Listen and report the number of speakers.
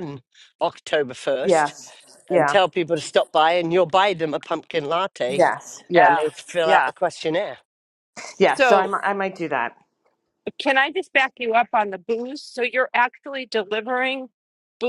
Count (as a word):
three